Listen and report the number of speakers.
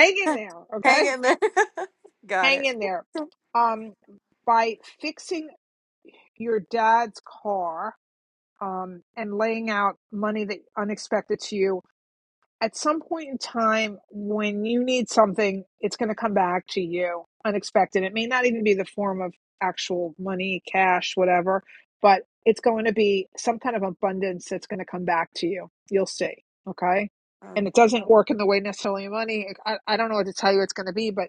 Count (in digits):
2